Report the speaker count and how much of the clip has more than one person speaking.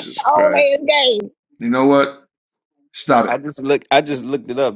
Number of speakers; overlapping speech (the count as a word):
three, about 11%